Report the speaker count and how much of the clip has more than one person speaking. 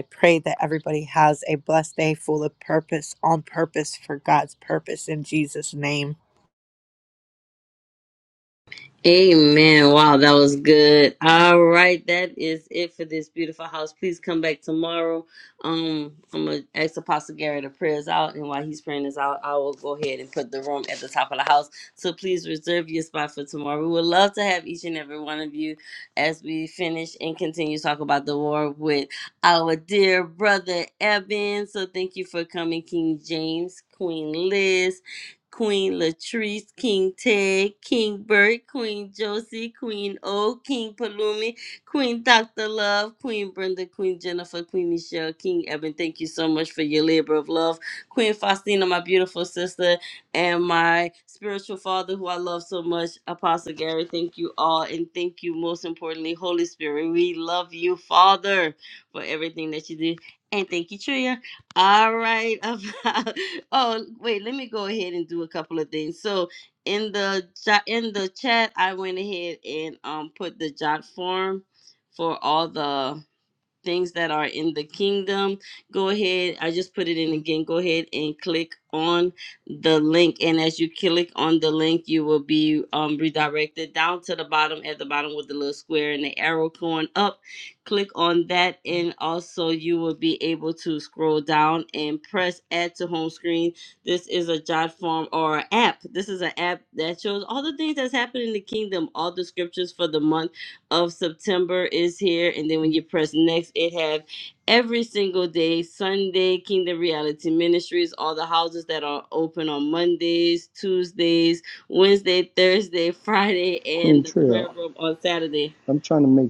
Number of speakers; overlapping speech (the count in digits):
3, about 1%